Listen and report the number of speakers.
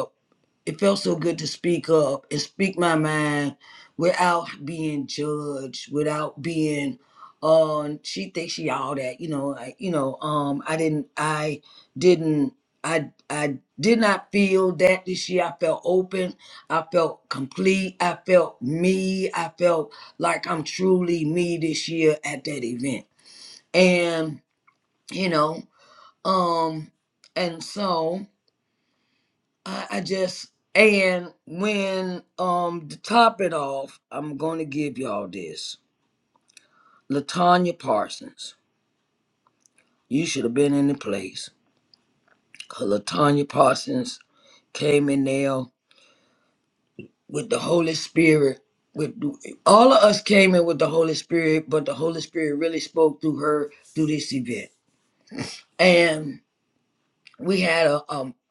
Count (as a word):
one